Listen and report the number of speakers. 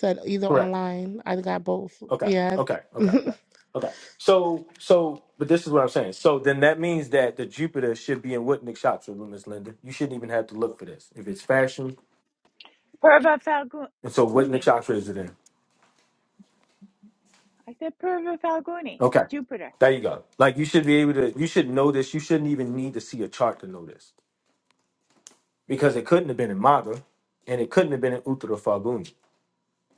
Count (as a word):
three